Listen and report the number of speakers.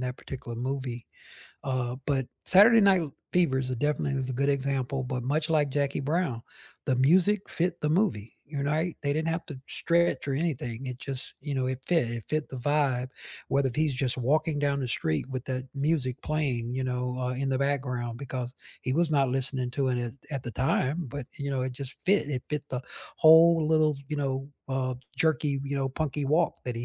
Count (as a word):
one